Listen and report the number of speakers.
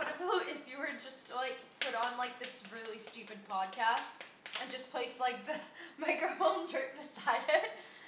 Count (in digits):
1